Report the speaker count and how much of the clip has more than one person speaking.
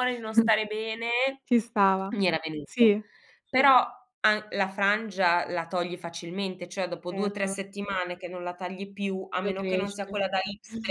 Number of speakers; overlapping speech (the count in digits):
2, about 13%